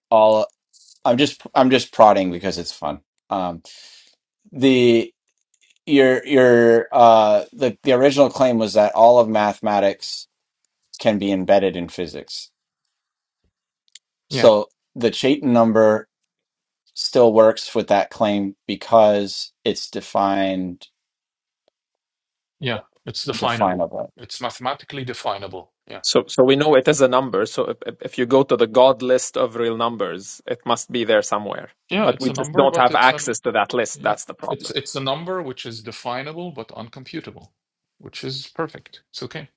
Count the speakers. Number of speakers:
3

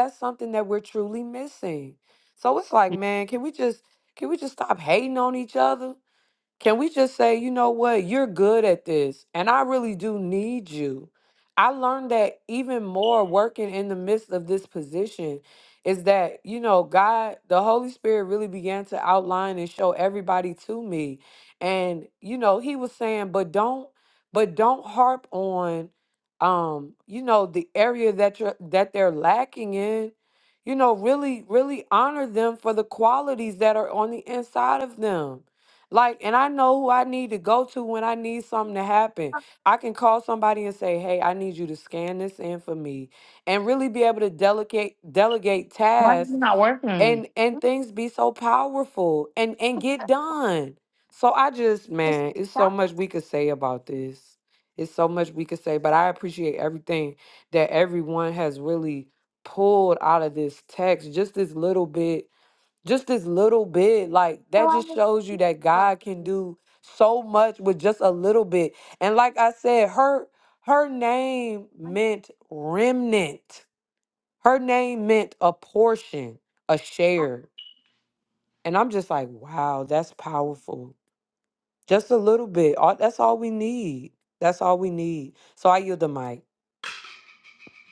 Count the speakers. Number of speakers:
2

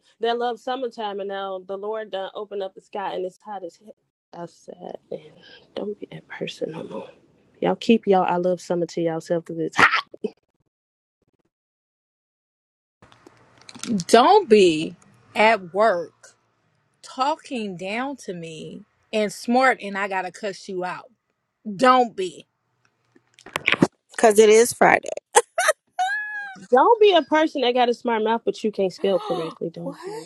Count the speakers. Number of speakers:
3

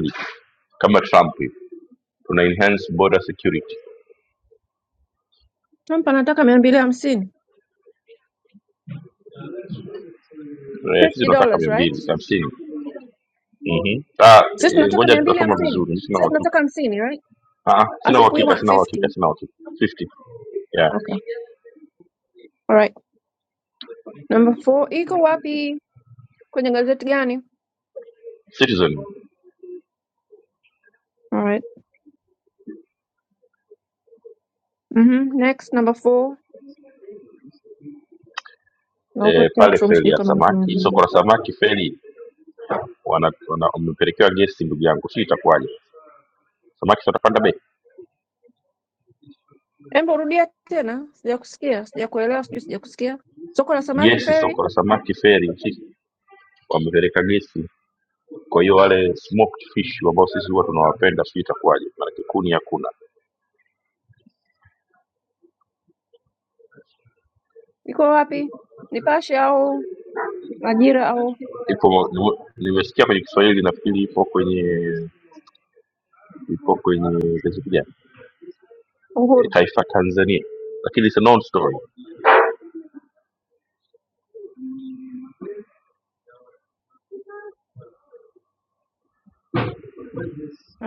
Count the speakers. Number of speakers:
2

